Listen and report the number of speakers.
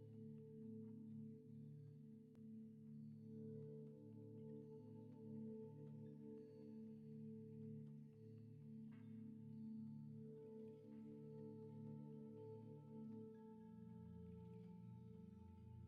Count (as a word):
zero